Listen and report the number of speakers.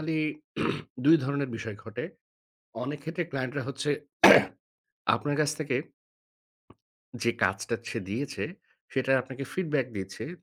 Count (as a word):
one